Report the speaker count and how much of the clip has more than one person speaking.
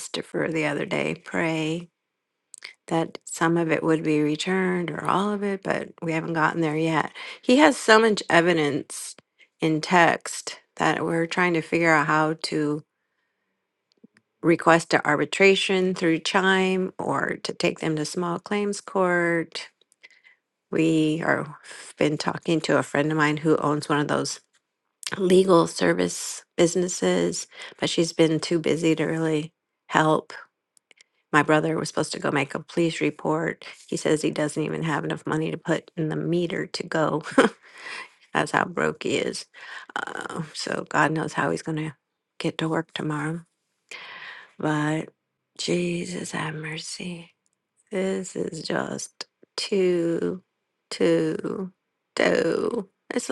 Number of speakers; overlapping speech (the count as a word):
one, no overlap